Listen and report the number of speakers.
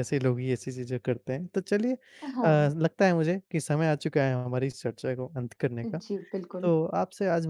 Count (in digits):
2